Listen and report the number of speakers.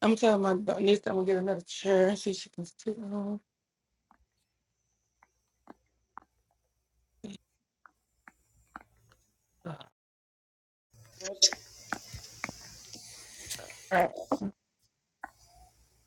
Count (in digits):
1